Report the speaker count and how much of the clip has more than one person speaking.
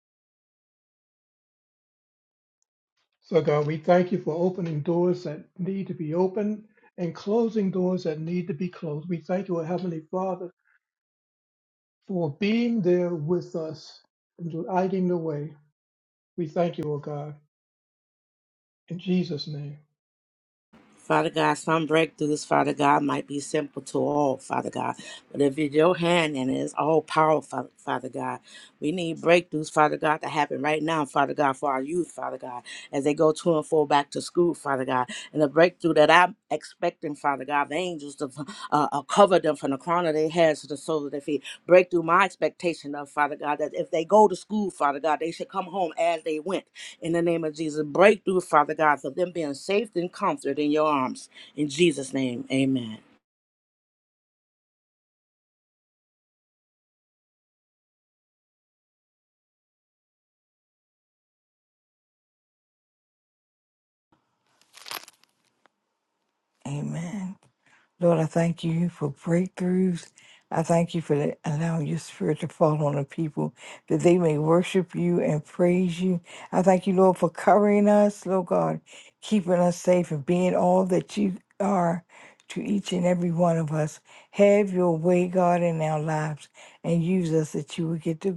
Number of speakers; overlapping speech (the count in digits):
3, no overlap